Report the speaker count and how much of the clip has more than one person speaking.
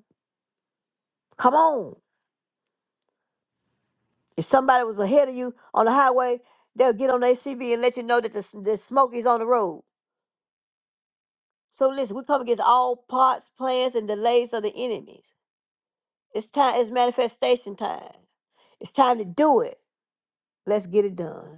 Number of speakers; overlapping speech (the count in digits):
1, no overlap